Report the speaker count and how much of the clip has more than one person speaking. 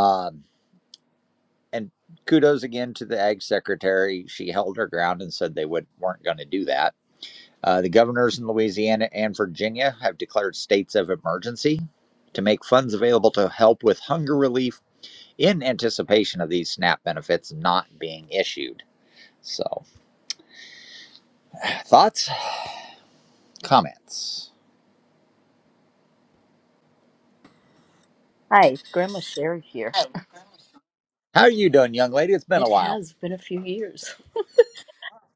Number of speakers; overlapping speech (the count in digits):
2, about 1%